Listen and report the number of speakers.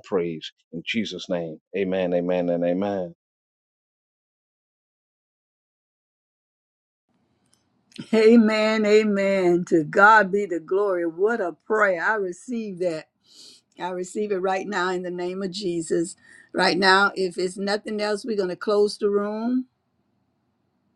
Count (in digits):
2